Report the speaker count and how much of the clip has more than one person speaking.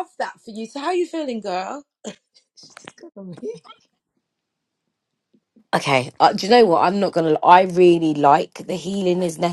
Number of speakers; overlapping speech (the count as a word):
two, no overlap